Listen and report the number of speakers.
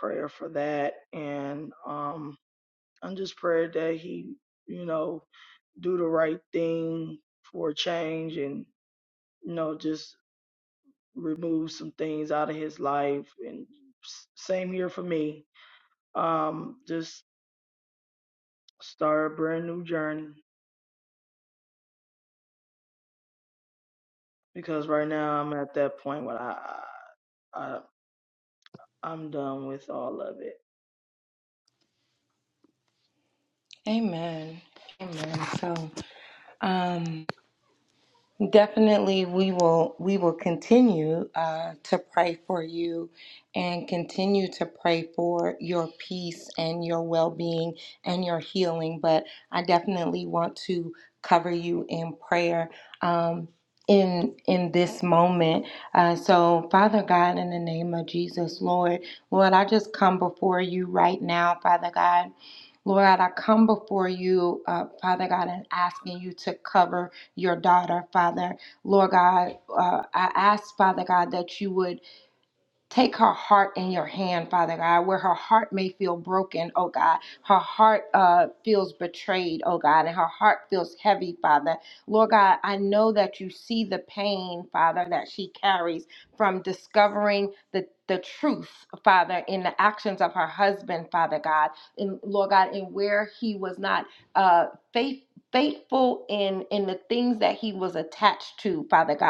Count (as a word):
two